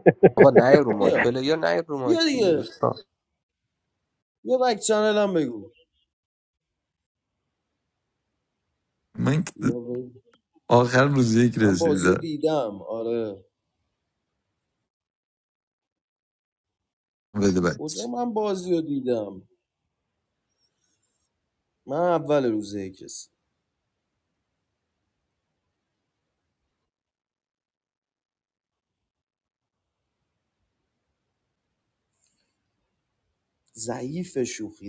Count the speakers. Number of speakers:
3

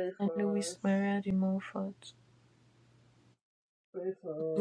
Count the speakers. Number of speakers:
2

